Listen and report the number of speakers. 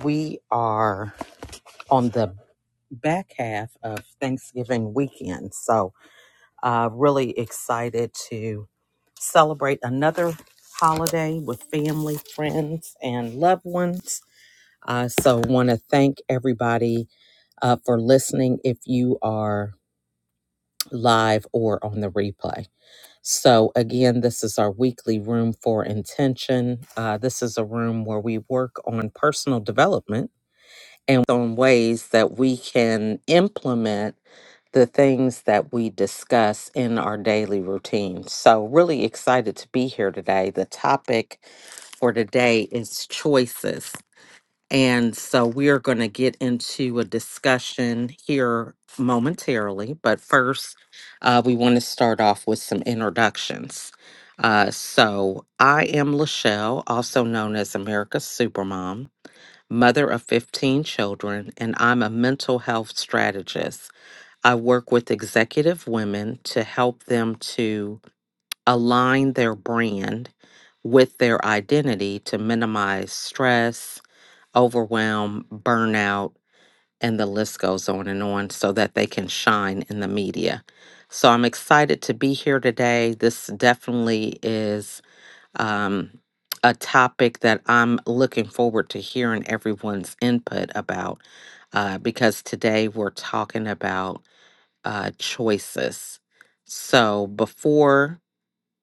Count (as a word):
one